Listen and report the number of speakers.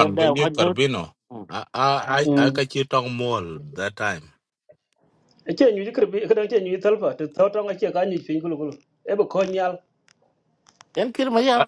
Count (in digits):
3